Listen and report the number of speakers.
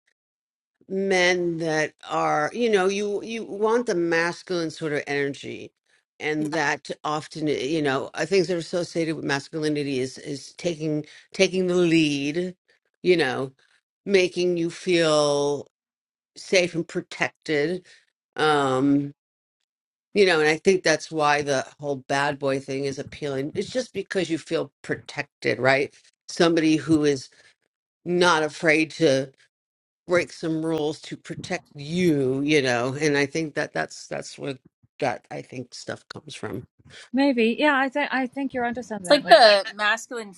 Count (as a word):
three